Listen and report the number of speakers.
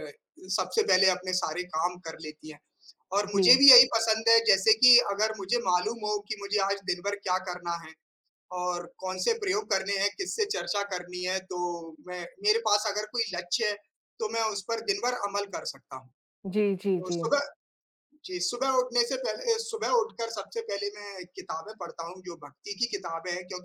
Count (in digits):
2